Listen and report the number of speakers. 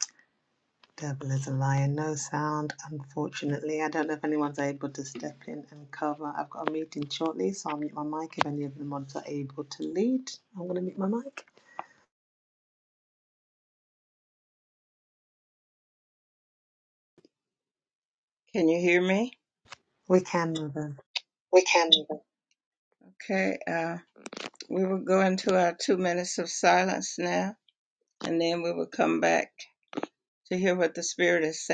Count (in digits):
2